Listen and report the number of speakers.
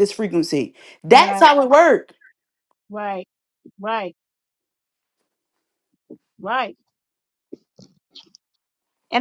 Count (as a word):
two